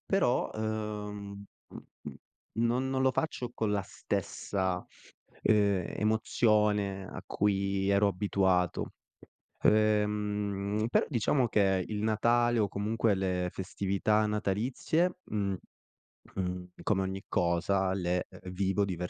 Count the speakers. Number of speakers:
1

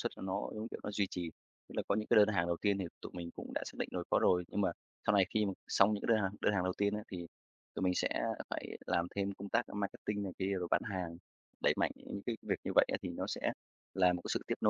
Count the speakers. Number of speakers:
1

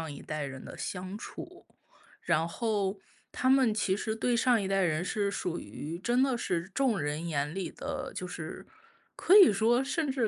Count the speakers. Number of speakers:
1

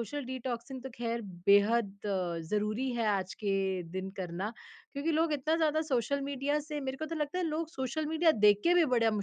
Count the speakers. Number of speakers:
1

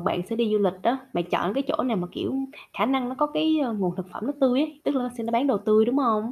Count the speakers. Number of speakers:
1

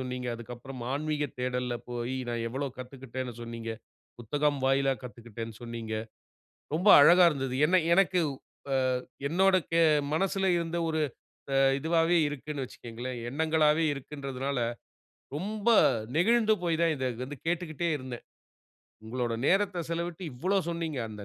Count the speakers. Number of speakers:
1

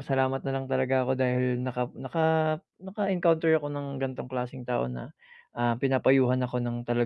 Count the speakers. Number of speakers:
1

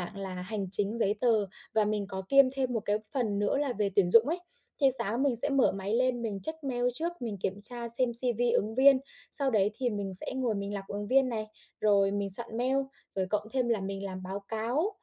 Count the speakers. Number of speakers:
1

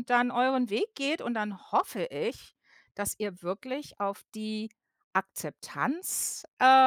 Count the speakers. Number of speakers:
1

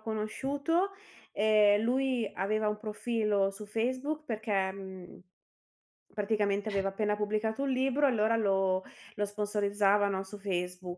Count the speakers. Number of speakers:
1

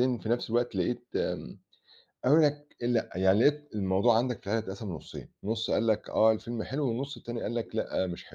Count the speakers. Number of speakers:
1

